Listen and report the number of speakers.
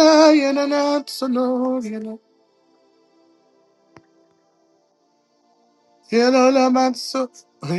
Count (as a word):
one